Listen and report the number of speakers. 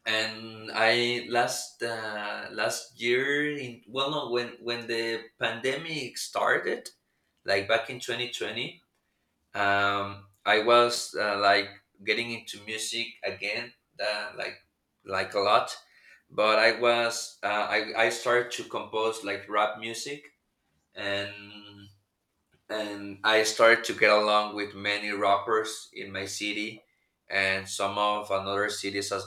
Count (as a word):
one